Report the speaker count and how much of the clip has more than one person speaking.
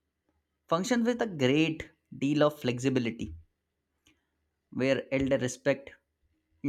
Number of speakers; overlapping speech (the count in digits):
1, no overlap